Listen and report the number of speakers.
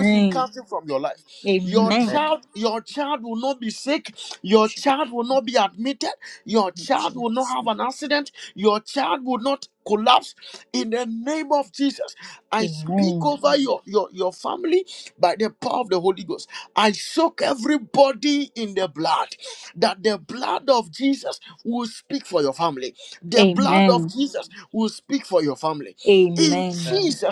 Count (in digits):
2